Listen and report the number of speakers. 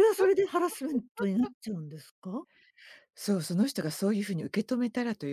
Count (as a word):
two